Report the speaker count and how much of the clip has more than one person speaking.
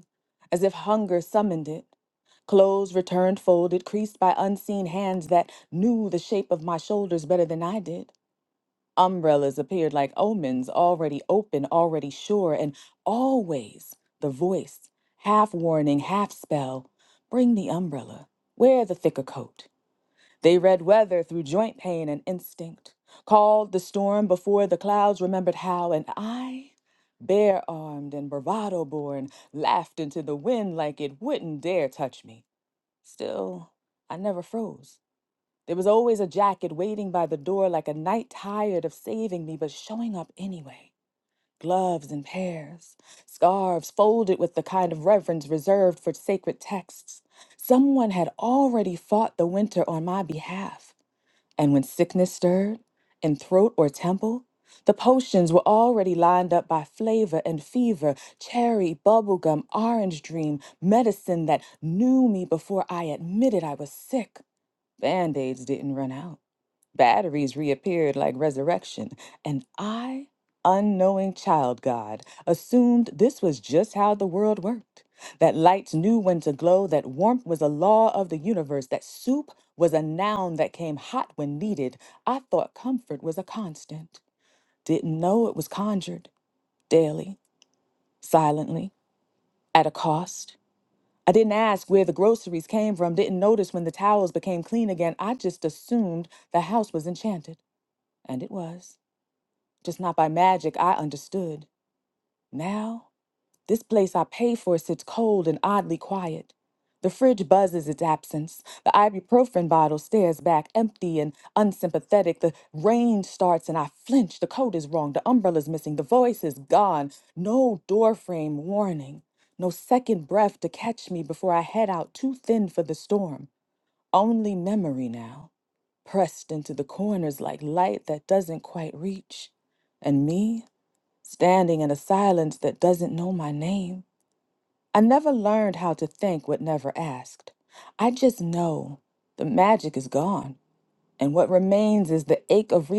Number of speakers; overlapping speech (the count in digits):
1, no overlap